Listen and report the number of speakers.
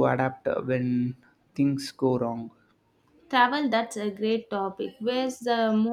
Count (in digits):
2